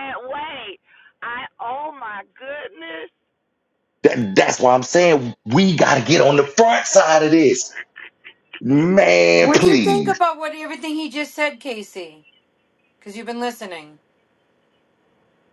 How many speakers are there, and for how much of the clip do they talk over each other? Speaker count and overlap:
three, about 5%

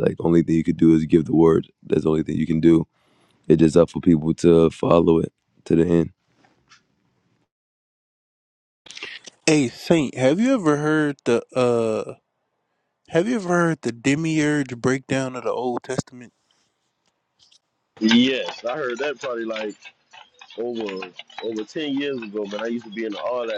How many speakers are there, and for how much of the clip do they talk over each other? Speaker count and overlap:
three, no overlap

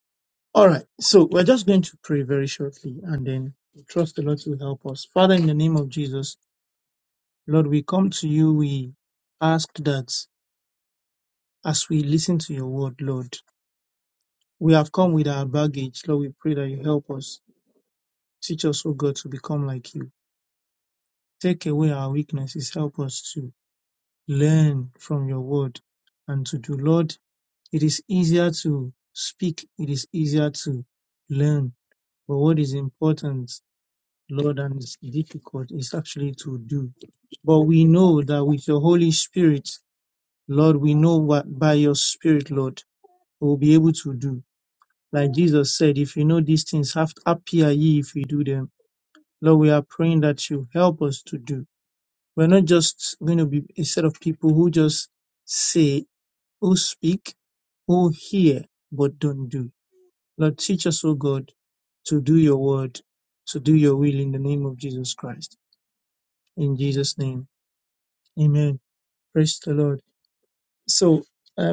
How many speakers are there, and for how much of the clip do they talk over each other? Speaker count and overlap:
one, no overlap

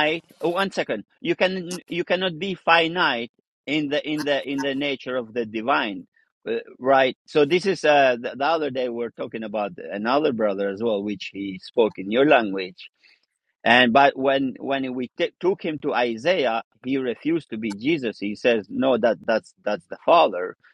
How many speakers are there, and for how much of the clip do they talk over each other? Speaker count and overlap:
one, no overlap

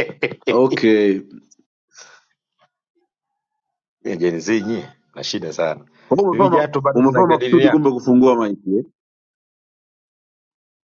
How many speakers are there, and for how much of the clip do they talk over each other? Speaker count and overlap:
two, about 13%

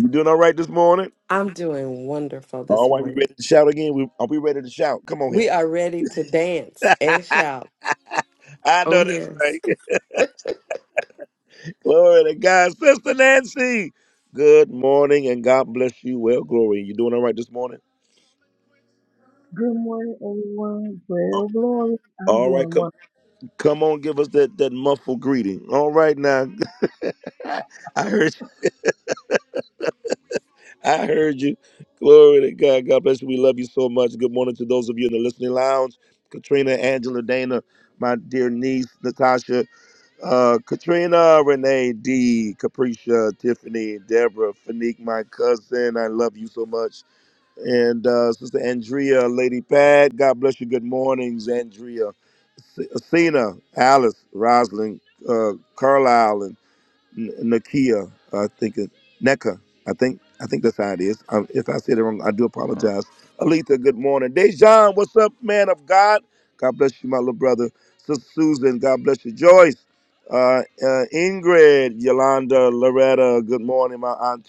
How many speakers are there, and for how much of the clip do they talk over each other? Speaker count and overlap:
three, about 3%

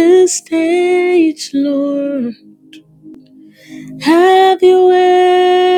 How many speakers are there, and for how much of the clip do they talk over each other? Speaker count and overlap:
one, no overlap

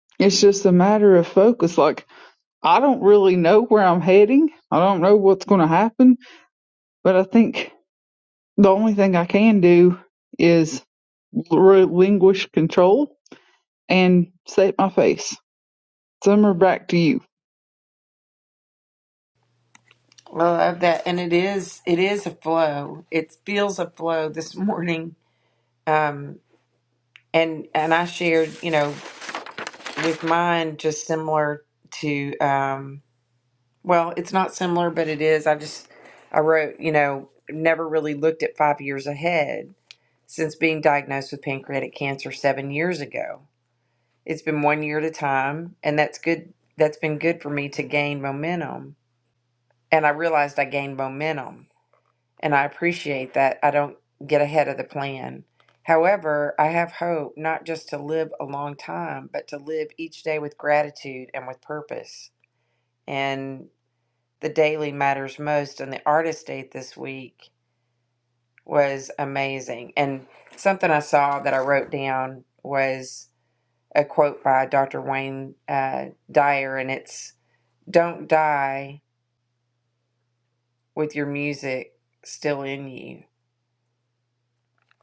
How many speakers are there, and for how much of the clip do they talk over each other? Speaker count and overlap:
two, no overlap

